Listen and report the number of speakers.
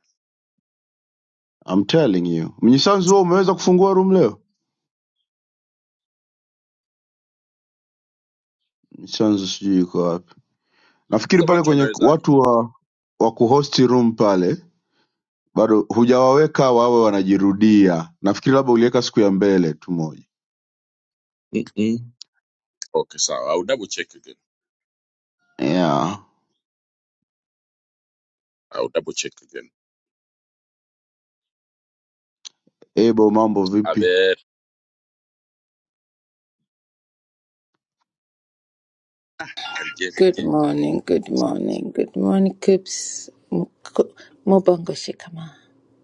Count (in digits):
3